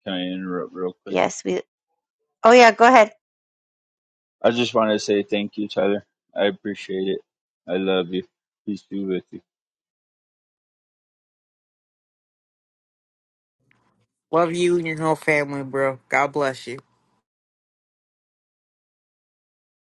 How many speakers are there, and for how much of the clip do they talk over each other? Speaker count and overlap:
3, under 1%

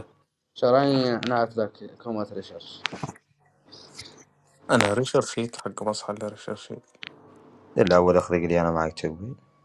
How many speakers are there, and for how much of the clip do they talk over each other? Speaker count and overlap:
3, no overlap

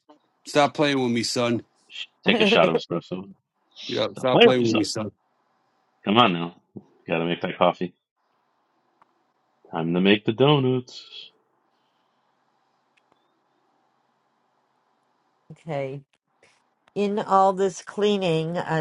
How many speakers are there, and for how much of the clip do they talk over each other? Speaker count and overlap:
3, about 5%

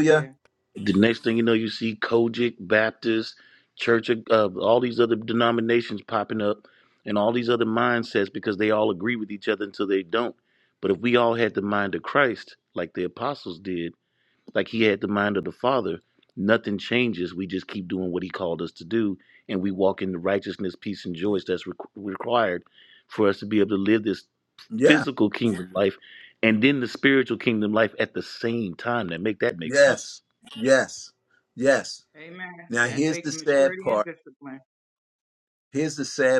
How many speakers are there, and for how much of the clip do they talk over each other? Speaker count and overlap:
3, about 6%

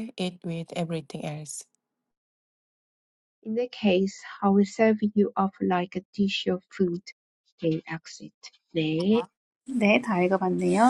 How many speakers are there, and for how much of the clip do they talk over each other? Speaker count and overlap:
3, no overlap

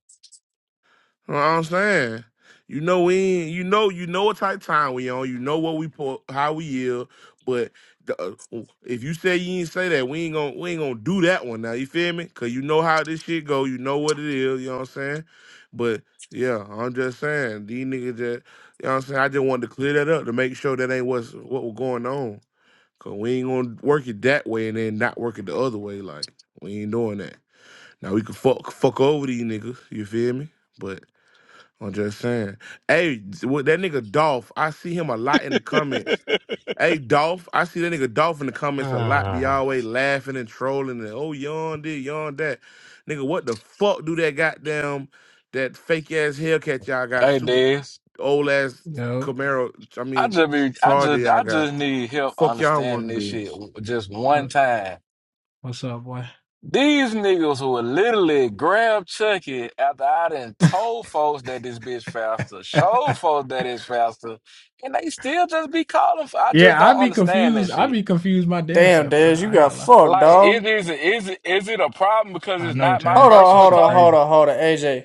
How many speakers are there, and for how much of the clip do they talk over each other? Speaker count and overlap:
4, about 11%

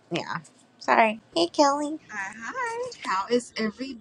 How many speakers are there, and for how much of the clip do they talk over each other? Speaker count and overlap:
2, no overlap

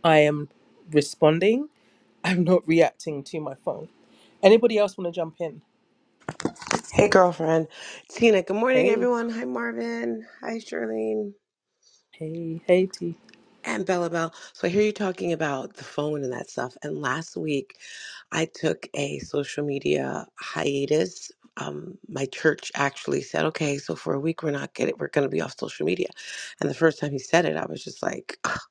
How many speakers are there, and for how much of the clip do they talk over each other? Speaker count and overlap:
2, about 1%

